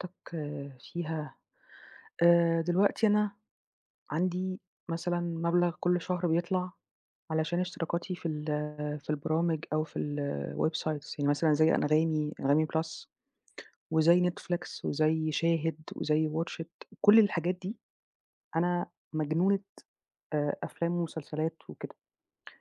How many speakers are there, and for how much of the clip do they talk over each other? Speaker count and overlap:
1, no overlap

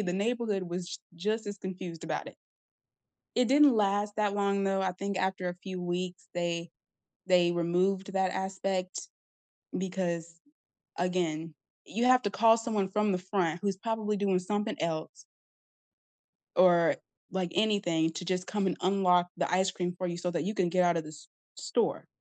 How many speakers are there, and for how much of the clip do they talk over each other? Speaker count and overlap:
1, no overlap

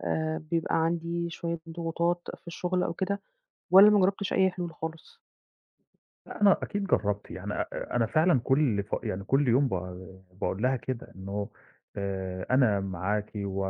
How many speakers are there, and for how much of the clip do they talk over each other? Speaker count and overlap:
2, no overlap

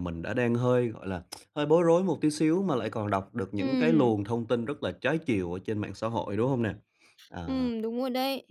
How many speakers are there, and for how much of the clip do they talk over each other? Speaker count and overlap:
2, about 7%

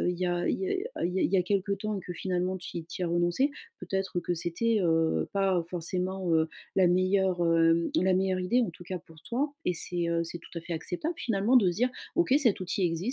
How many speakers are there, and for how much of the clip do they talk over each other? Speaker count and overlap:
1, no overlap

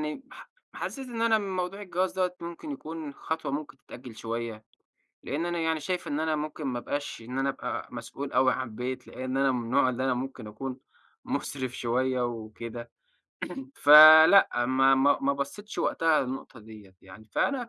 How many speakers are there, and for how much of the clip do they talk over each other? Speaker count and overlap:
1, no overlap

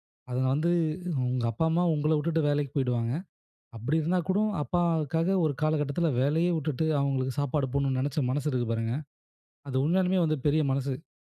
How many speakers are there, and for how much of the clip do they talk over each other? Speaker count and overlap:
1, no overlap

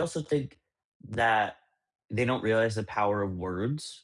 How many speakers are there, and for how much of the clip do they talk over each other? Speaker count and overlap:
1, no overlap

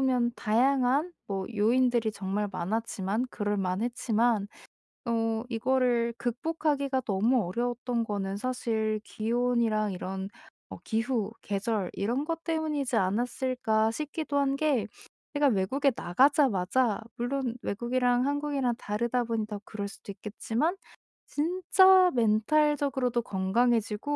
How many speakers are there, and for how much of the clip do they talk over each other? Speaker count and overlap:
1, no overlap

